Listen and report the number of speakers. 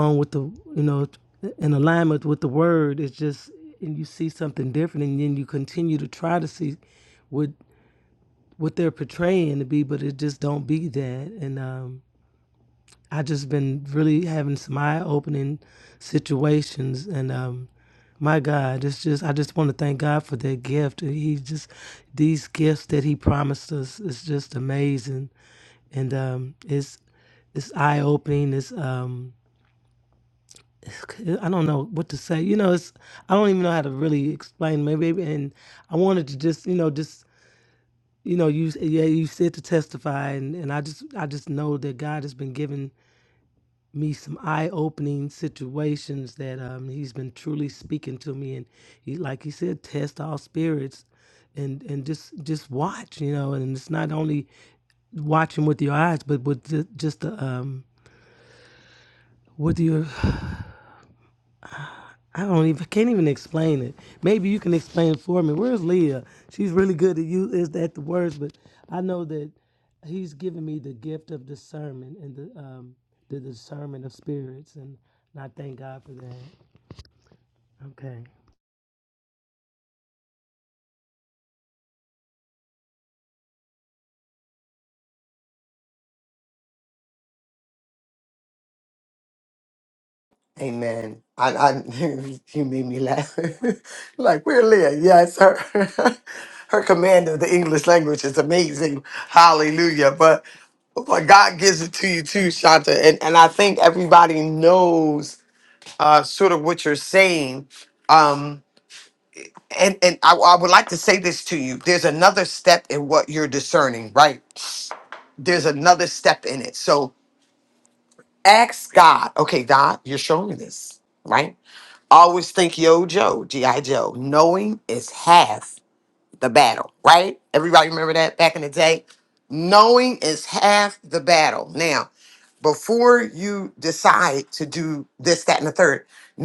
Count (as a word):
two